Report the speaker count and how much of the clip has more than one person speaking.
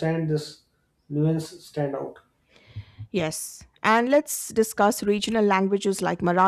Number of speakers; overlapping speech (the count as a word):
two, no overlap